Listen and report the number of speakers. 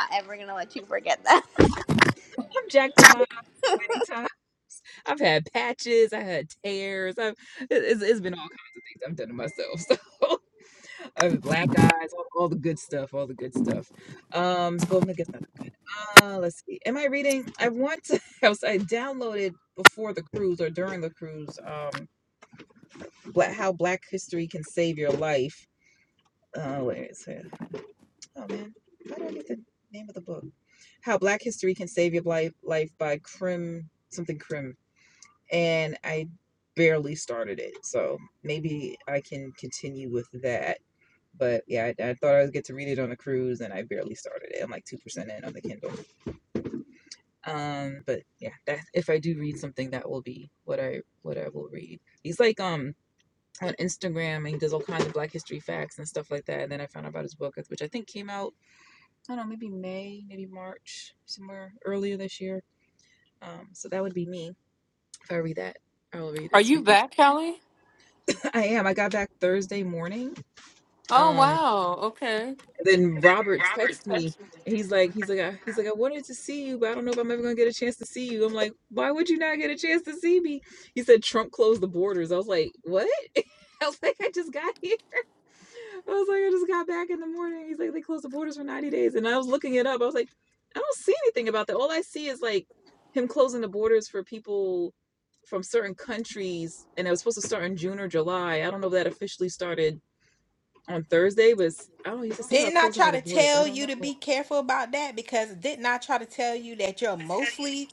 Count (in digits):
4